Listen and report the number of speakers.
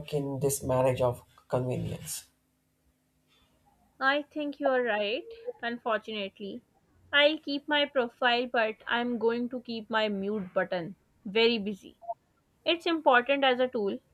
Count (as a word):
two